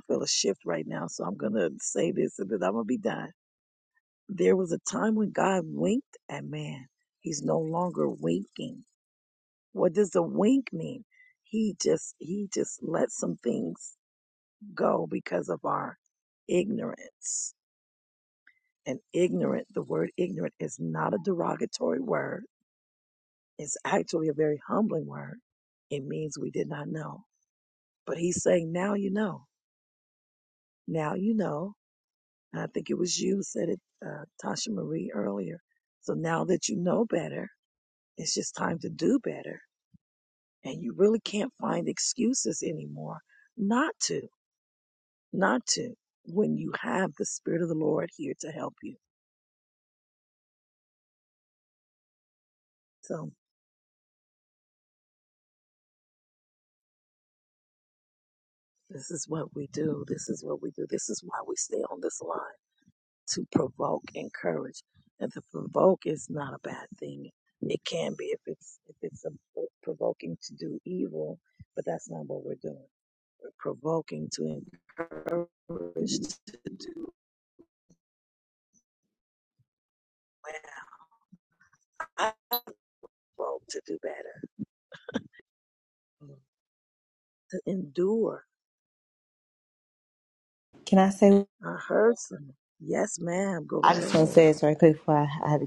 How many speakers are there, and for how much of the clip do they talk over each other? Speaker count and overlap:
two, about 1%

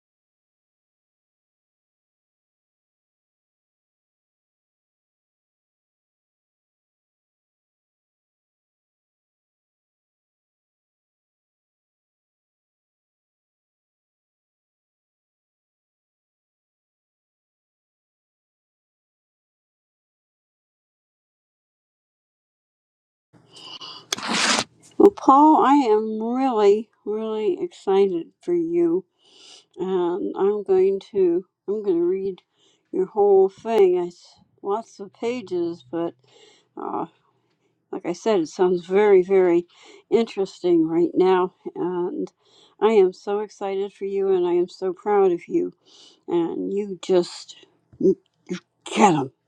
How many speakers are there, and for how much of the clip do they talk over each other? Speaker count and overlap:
one, no overlap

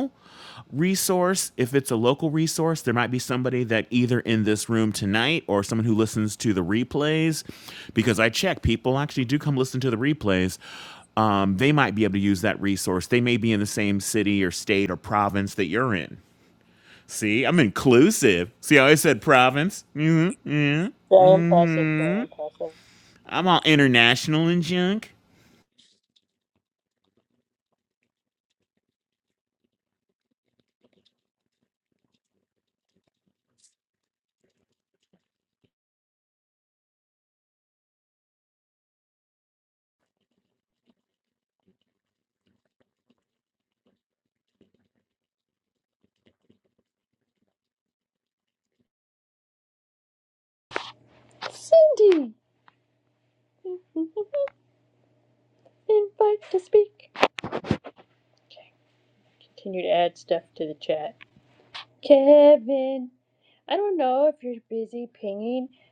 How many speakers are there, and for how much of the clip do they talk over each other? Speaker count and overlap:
two, about 2%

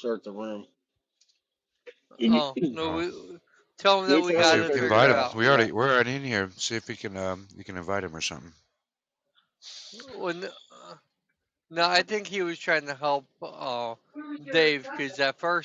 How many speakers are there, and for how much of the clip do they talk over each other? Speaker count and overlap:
three, about 12%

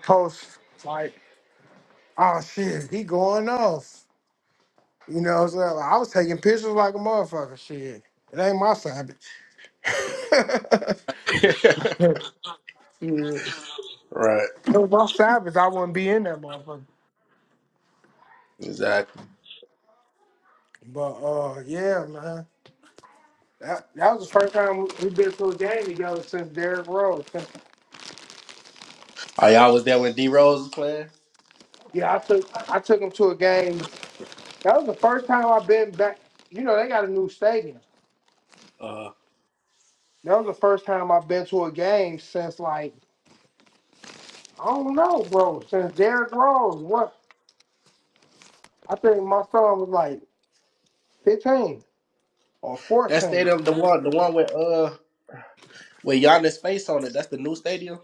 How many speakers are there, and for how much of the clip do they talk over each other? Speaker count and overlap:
two, under 1%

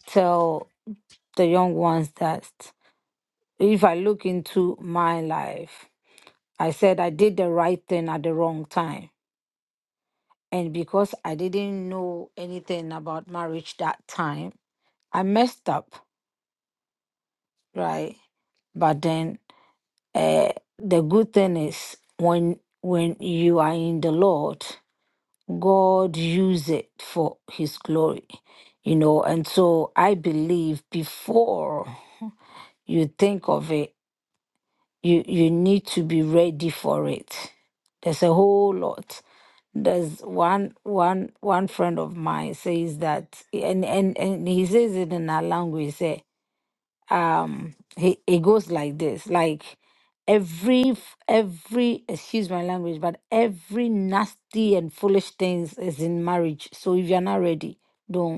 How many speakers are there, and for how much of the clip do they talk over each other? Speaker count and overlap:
one, no overlap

